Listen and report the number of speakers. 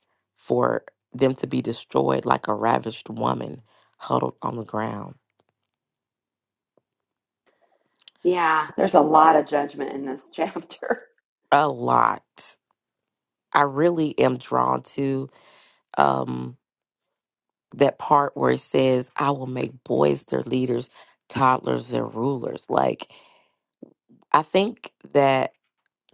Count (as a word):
two